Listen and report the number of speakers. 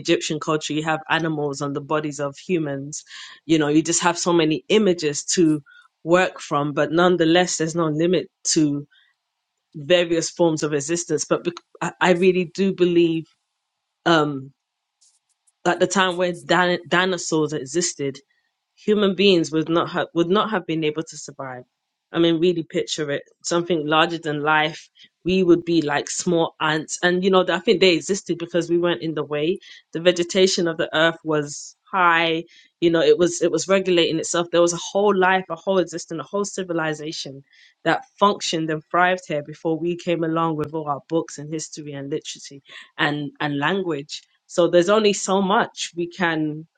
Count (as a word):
one